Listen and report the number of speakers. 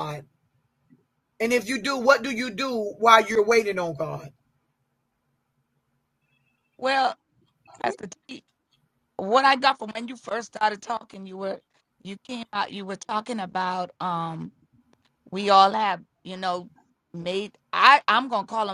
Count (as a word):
two